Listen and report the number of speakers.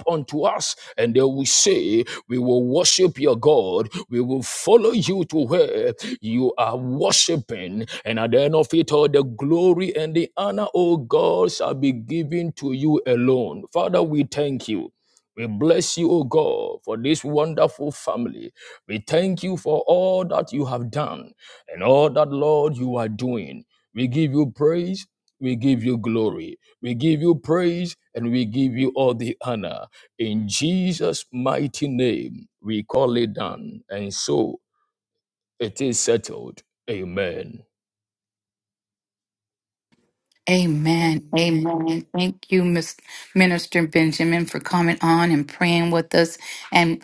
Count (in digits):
2